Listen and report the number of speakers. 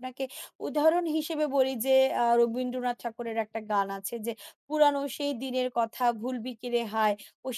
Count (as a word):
one